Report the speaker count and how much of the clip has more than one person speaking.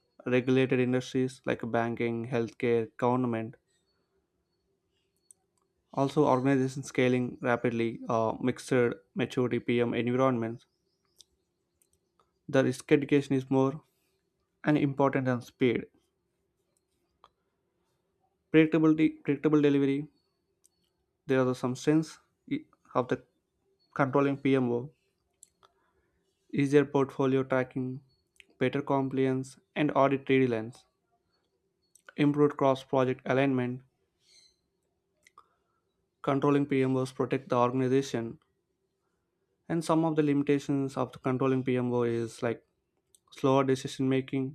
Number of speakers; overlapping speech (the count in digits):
1, no overlap